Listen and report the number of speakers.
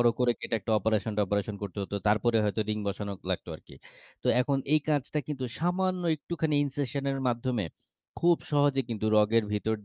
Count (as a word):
one